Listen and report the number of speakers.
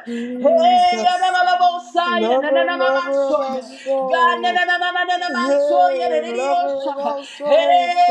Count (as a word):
two